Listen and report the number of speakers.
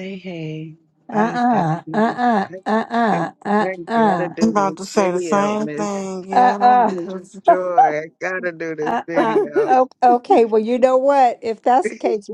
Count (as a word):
three